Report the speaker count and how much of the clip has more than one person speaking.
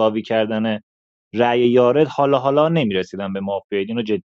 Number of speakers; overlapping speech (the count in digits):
1, no overlap